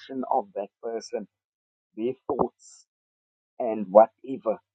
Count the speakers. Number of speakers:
1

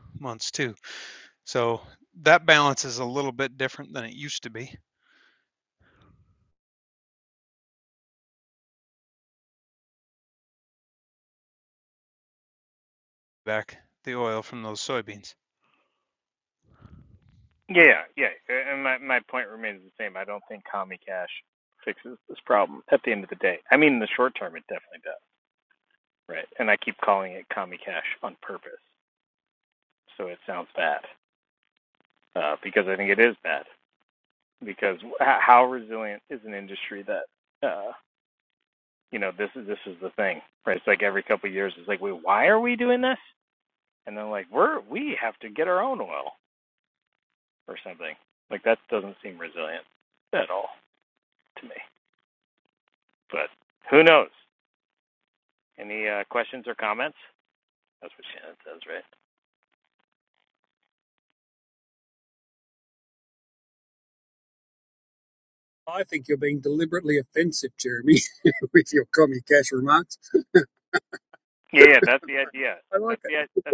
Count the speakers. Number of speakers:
3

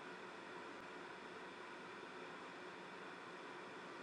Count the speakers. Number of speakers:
0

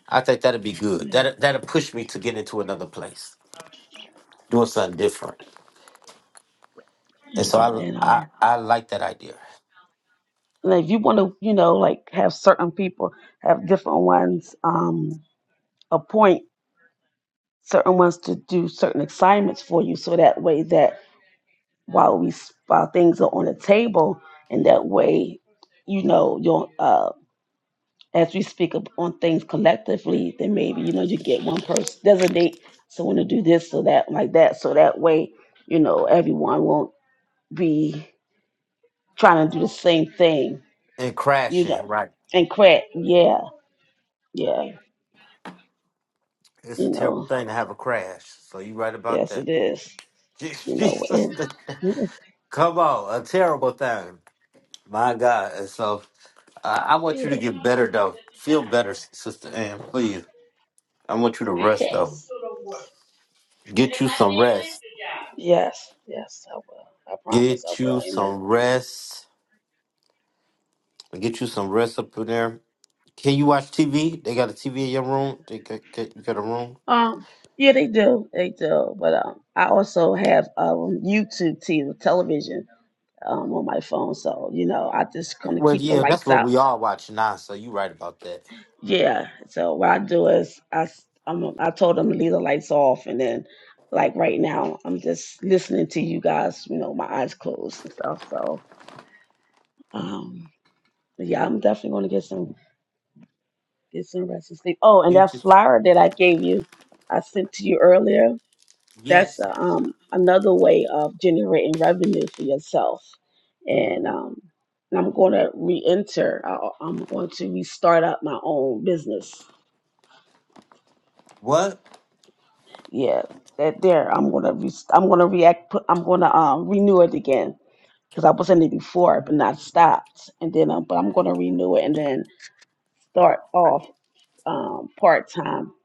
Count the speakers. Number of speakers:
2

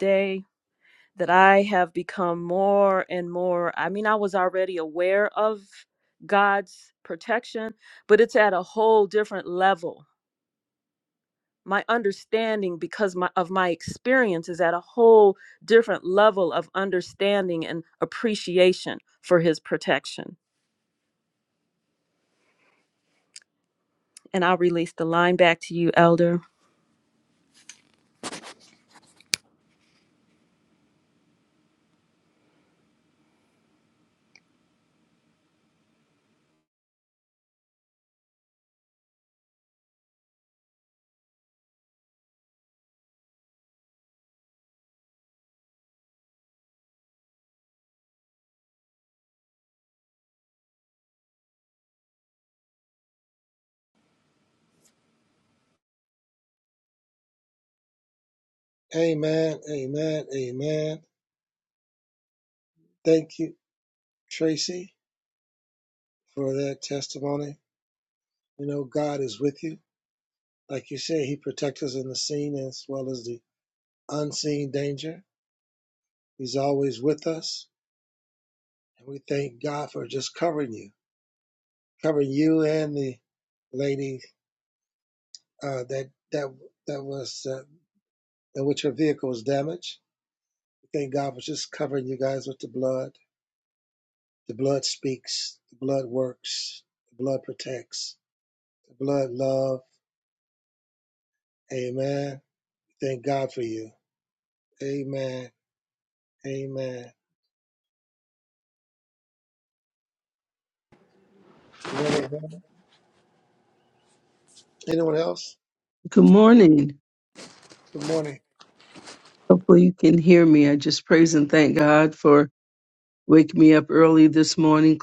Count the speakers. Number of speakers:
3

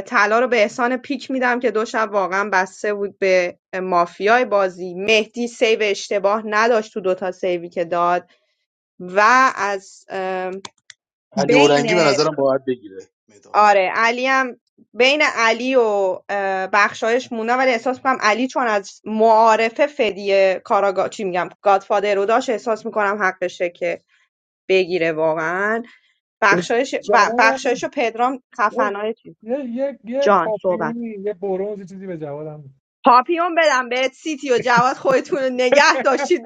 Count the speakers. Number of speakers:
3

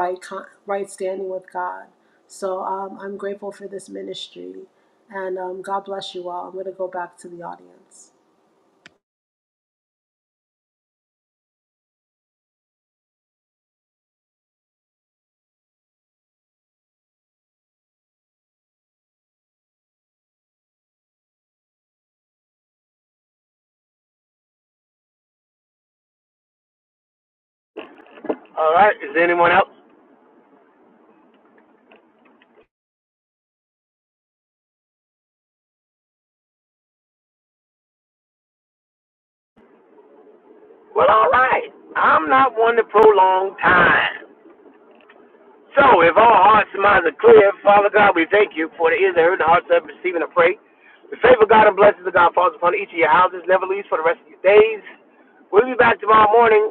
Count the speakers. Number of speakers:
2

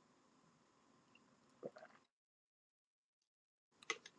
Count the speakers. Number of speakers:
0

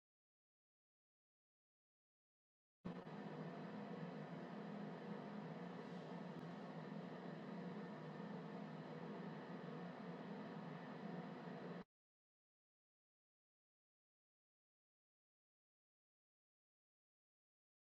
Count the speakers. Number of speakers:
0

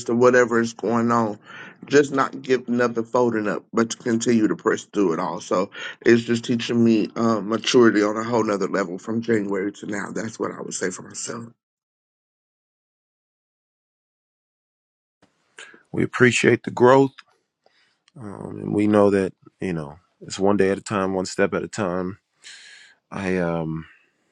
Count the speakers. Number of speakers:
2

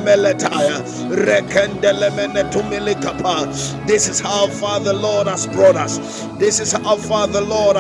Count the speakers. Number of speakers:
2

